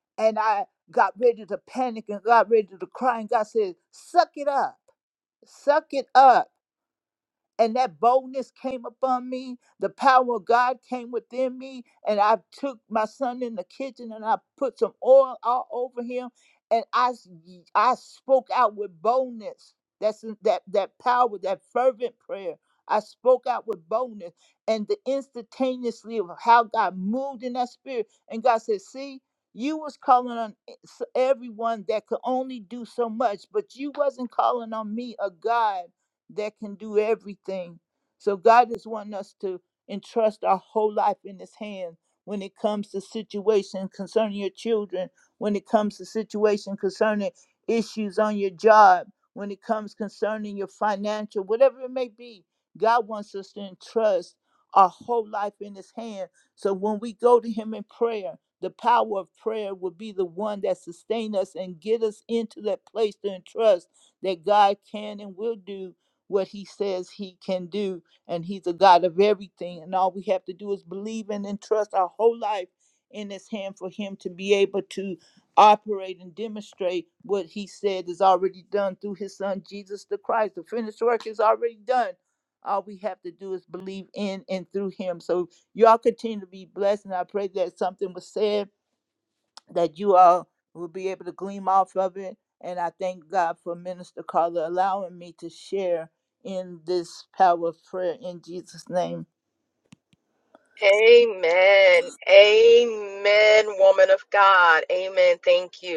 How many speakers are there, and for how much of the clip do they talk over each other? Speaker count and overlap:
2, no overlap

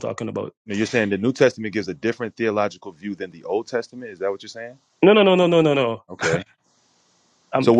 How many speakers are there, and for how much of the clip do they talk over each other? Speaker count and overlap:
2, about 2%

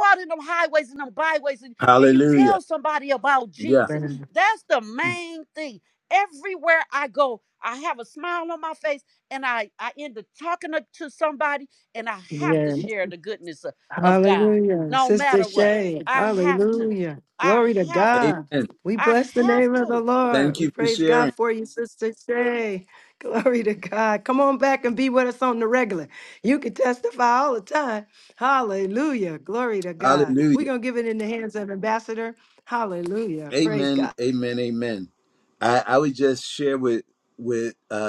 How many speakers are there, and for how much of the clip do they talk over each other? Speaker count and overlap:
3, about 23%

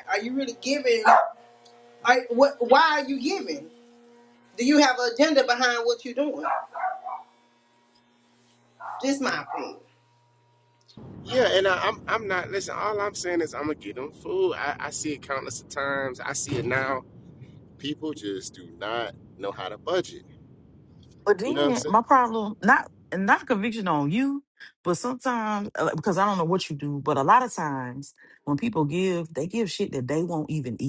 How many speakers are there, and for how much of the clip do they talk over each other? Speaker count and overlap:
3, about 1%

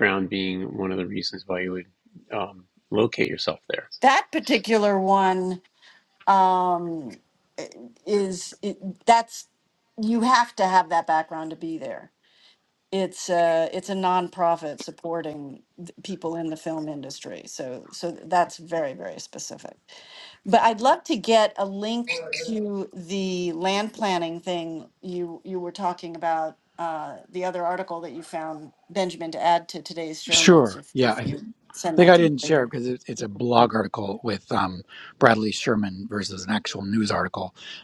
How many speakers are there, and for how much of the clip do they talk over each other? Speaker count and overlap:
3, about 5%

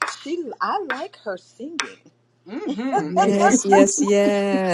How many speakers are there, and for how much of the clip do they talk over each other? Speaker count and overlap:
3, about 13%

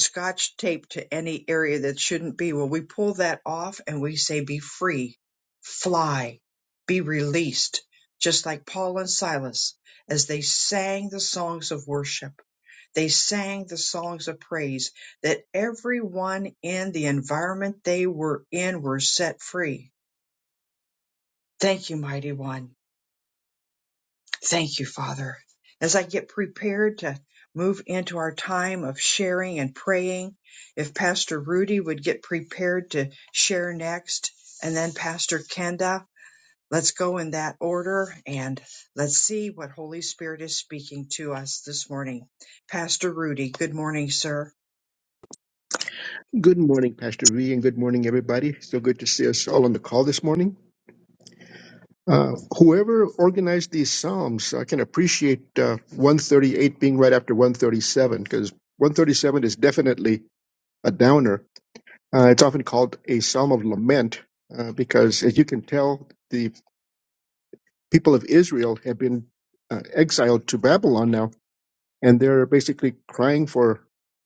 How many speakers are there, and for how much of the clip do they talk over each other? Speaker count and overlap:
2, no overlap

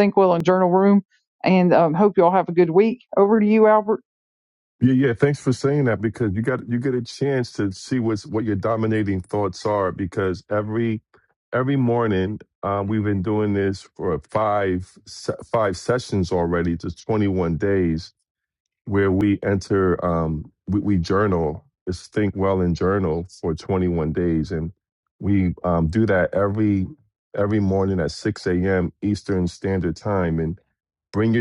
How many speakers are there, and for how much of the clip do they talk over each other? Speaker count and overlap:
2, no overlap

